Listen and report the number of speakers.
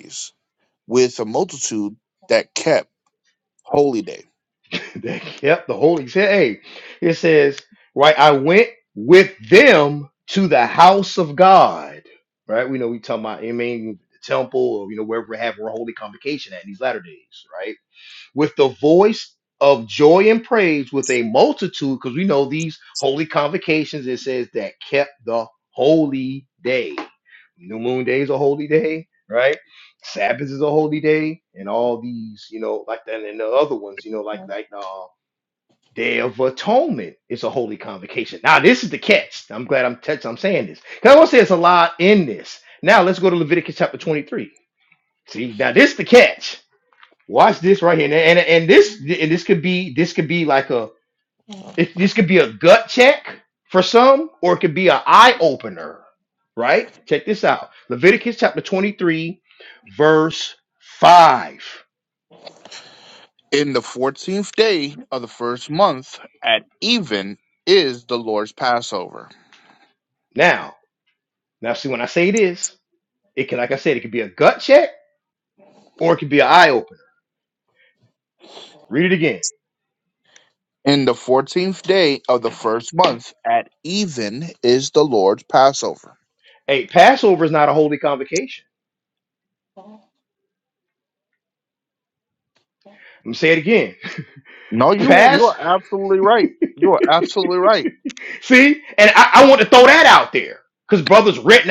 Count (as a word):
two